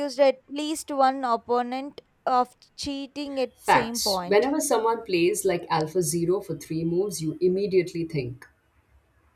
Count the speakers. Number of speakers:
2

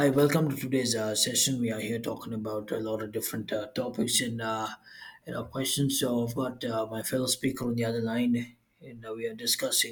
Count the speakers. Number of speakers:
1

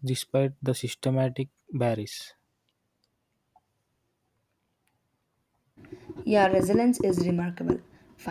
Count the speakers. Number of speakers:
2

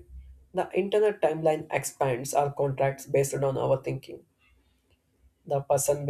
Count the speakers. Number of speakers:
1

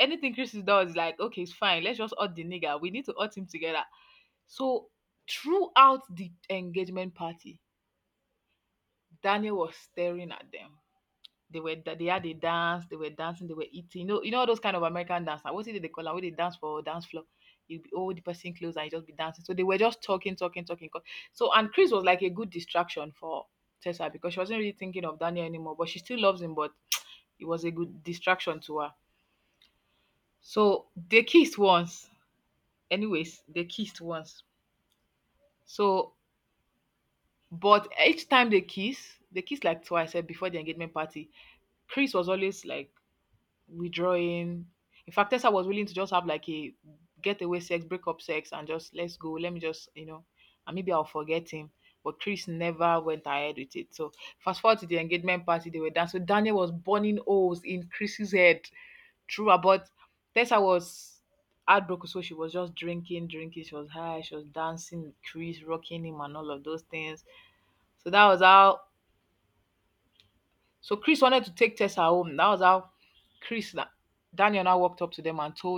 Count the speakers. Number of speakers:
1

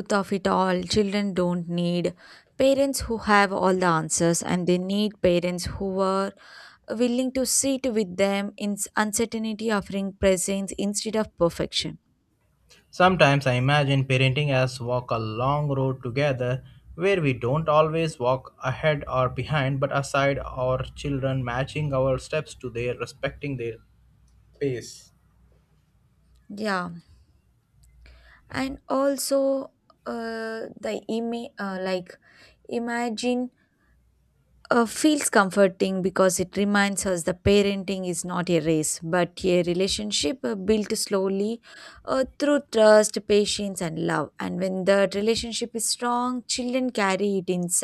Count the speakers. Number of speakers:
2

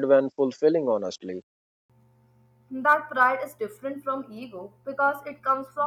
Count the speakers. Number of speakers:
2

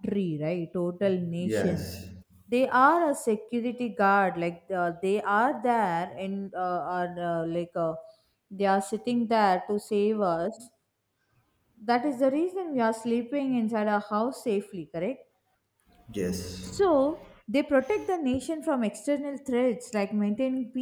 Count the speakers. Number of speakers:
2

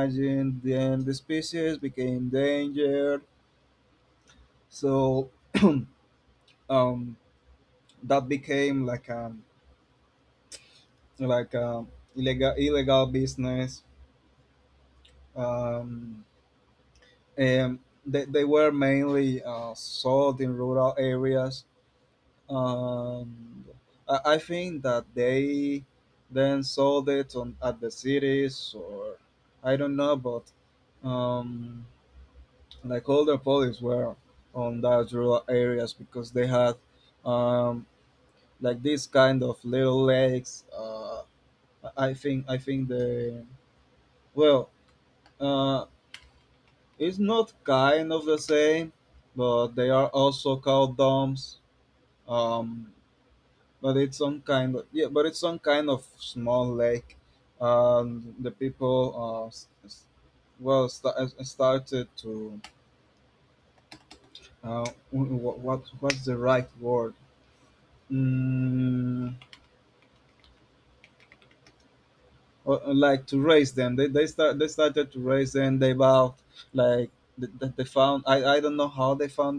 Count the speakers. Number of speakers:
1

